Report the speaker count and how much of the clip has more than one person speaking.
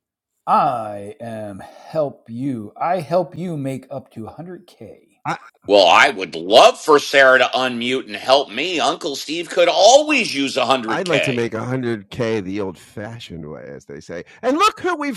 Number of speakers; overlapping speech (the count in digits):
3, about 4%